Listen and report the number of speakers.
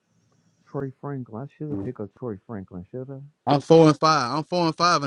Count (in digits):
2